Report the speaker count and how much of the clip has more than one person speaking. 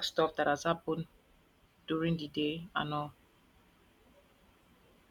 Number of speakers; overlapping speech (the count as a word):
one, no overlap